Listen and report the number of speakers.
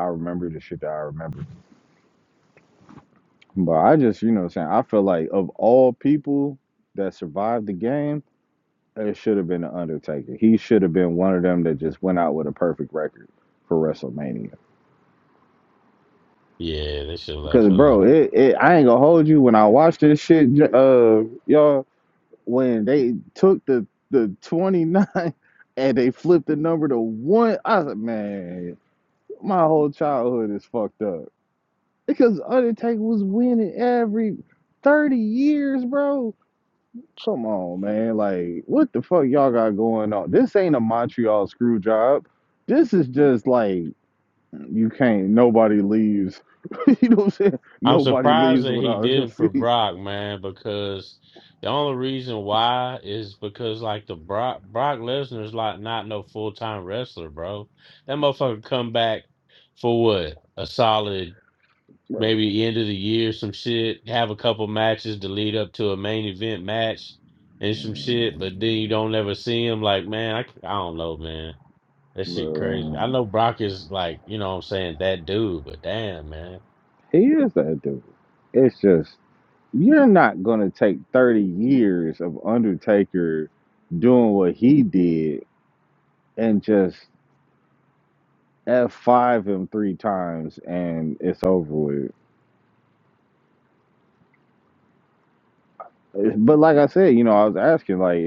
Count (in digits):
2